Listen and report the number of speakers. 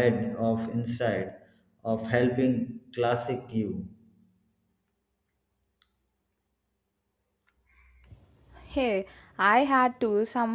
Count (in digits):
2